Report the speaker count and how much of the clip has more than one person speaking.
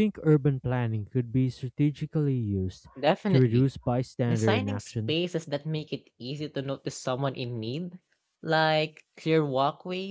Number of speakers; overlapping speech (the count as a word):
two, about 12%